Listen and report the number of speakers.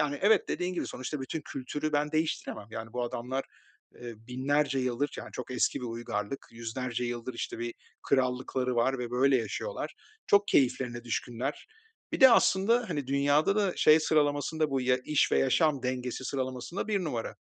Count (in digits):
1